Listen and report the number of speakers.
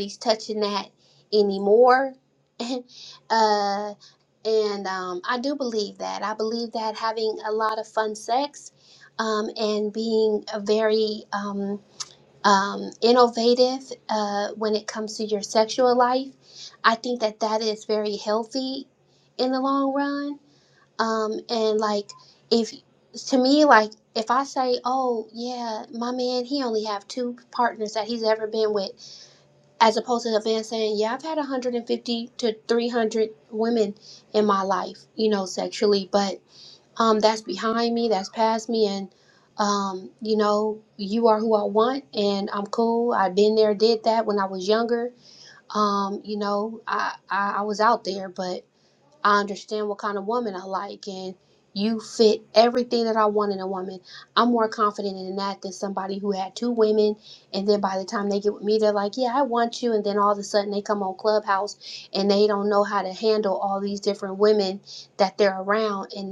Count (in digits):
1